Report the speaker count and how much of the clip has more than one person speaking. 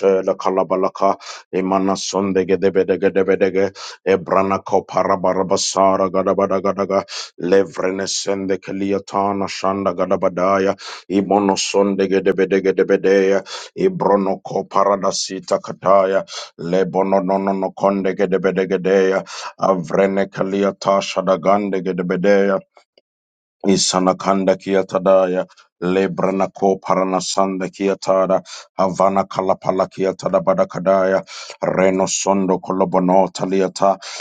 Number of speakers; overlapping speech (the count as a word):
one, no overlap